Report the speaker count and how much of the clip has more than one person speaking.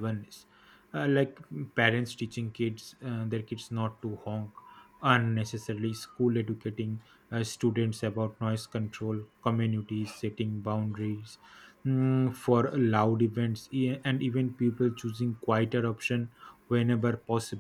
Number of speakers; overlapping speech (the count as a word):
one, no overlap